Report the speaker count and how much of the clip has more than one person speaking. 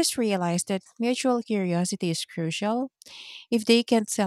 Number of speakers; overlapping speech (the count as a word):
one, no overlap